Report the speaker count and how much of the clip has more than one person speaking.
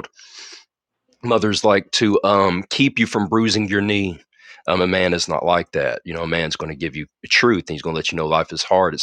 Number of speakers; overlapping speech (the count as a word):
one, no overlap